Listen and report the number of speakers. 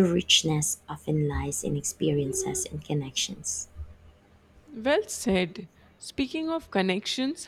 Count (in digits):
2